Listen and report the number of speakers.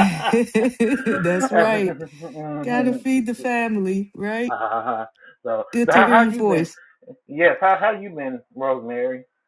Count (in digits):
2